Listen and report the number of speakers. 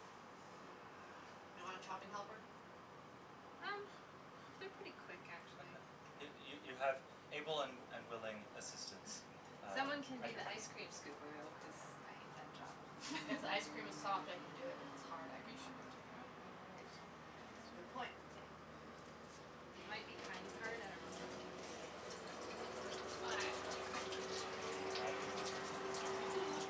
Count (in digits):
4